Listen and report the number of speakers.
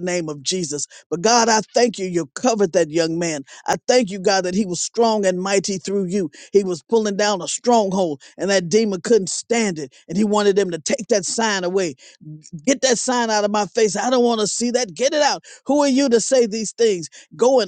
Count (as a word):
one